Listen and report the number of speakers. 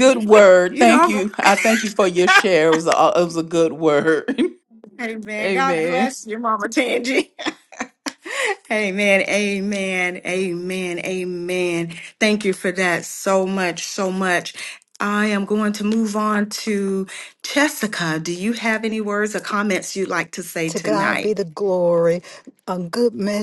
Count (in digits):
3